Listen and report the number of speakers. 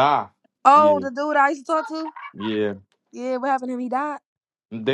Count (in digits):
2